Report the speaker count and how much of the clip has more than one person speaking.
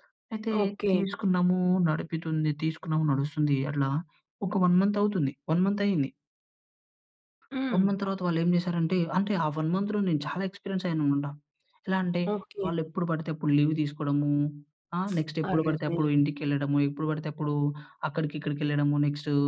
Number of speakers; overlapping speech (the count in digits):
2, about 7%